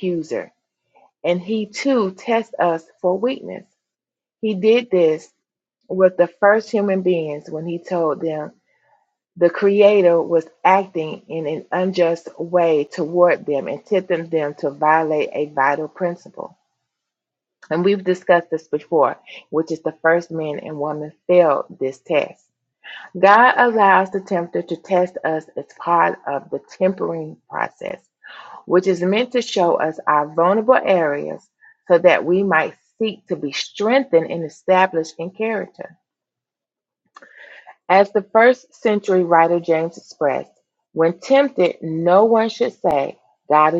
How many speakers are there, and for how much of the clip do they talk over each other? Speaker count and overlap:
one, no overlap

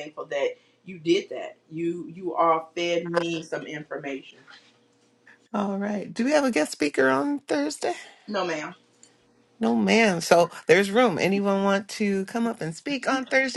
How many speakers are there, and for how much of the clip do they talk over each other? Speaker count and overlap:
two, no overlap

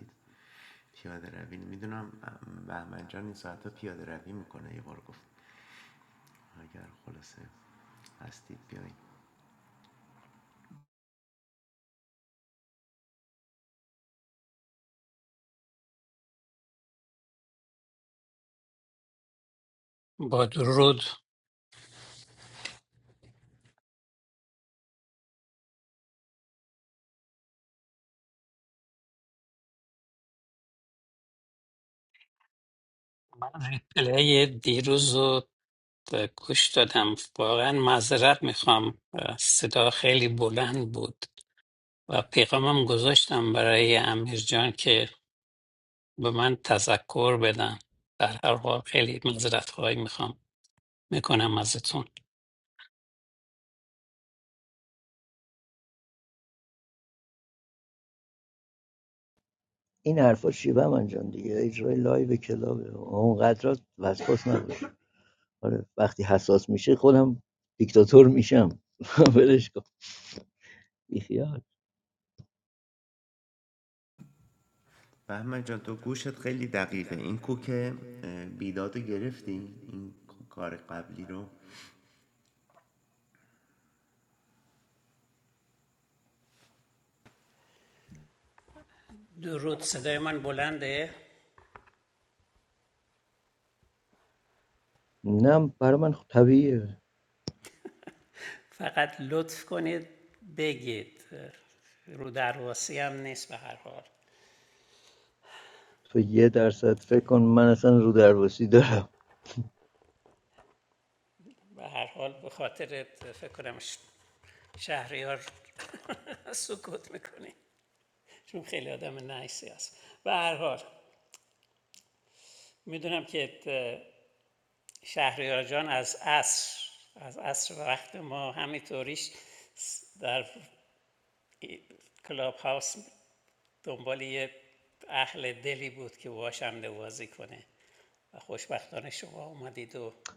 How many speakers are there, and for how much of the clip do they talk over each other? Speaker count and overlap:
three, no overlap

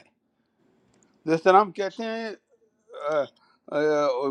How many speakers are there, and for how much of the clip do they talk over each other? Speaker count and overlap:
one, no overlap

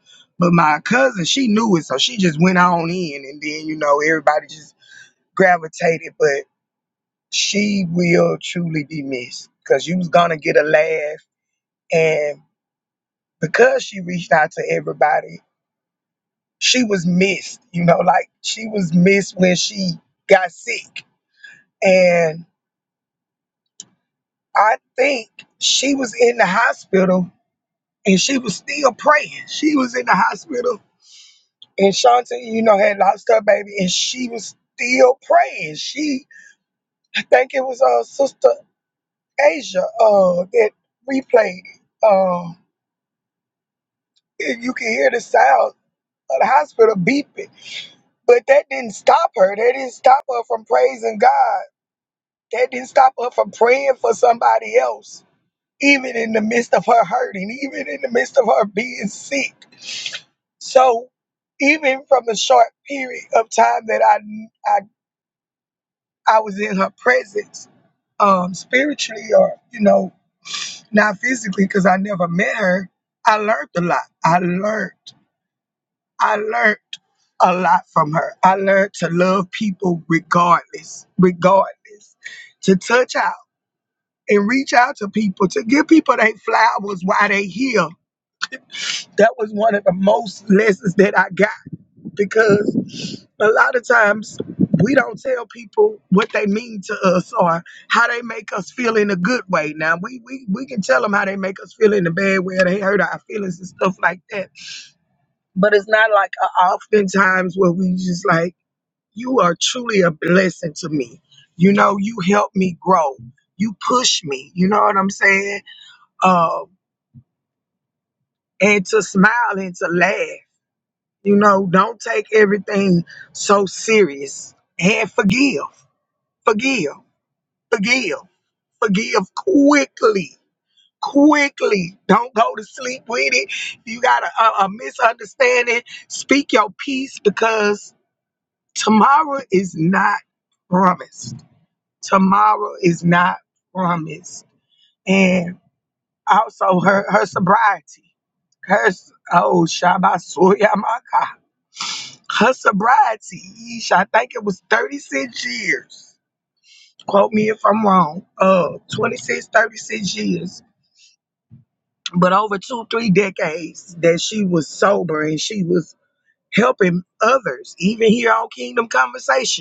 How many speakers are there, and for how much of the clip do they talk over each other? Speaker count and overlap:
one, no overlap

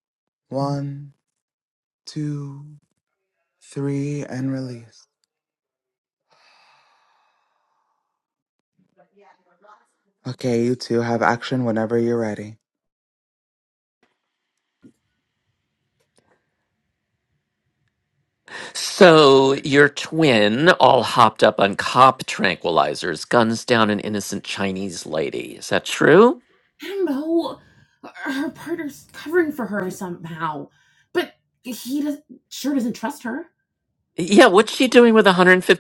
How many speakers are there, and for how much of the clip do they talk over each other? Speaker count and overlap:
three, no overlap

